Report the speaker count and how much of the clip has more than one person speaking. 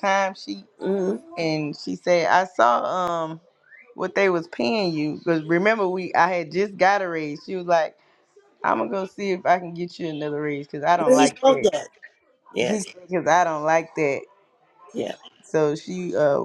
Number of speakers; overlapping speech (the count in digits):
2, about 5%